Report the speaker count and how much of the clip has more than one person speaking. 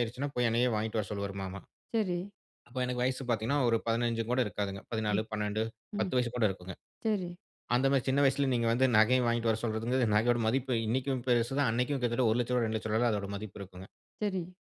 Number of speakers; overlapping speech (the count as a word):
two, about 2%